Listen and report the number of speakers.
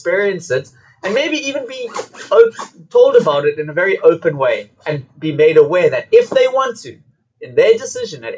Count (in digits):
1